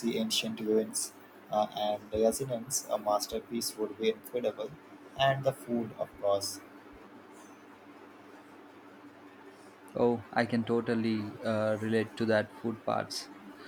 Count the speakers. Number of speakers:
2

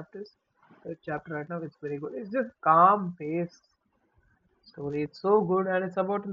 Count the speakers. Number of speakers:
1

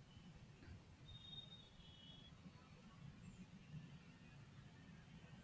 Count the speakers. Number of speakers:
0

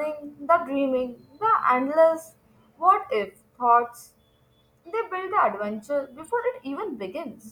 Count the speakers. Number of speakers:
1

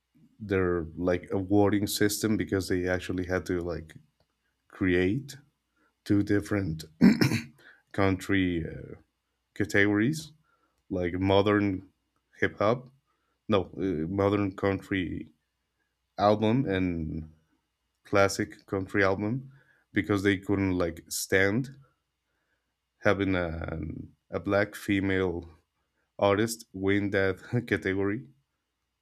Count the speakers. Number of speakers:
1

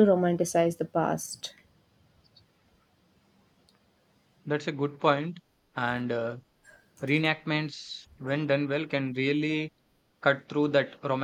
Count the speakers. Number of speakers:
2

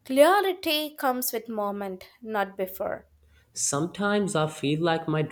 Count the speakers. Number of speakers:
2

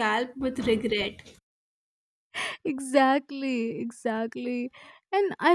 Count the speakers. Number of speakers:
2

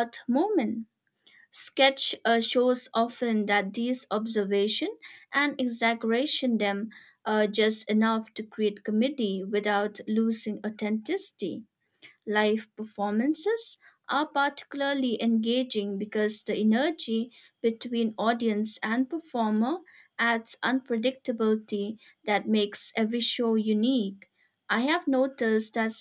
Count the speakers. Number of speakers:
1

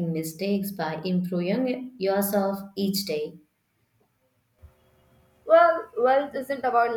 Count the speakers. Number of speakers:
2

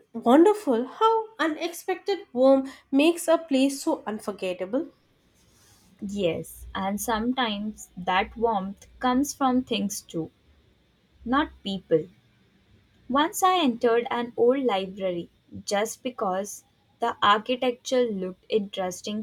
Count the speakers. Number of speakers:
2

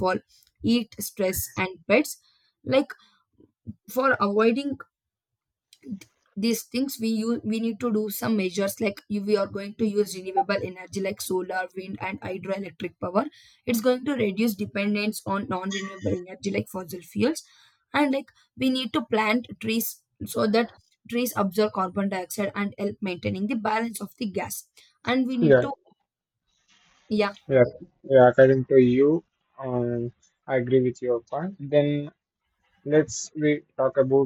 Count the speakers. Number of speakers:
2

